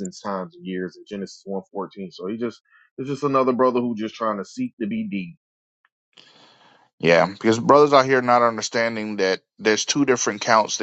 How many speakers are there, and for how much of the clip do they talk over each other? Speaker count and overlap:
two, no overlap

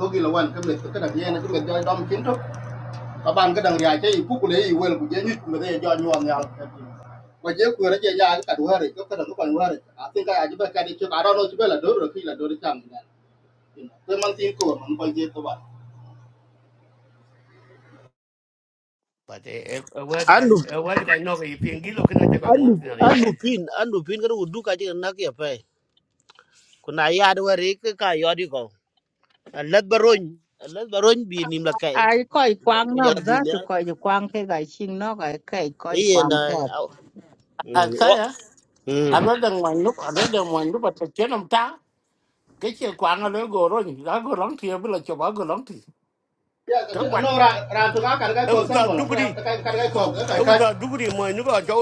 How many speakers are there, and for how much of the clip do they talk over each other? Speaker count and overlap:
five, about 8%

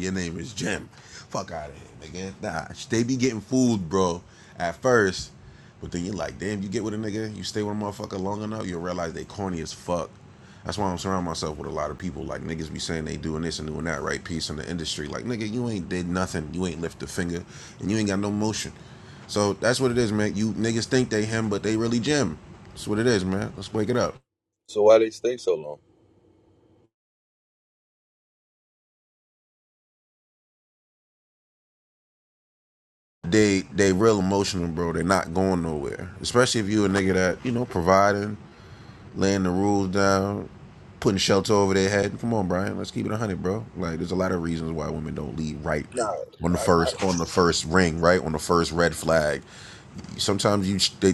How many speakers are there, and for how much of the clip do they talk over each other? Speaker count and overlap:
two, about 1%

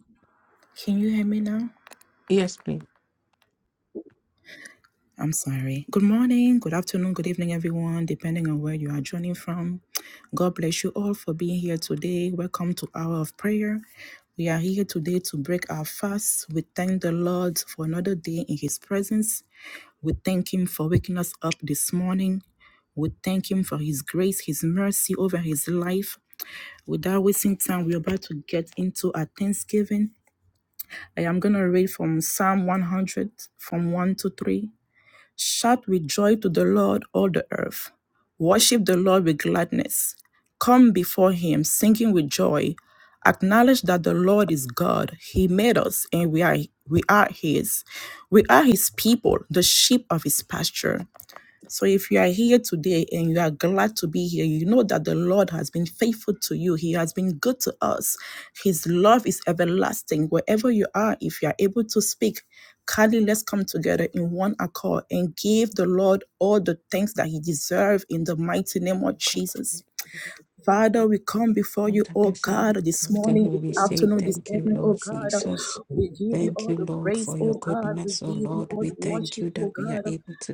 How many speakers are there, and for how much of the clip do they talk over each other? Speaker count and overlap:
two, about 3%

